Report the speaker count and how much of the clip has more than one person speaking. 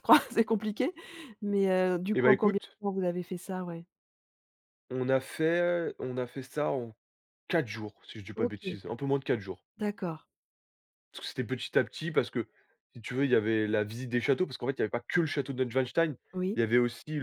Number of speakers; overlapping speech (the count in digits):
2, about 5%